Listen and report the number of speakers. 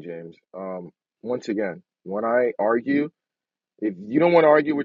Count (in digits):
1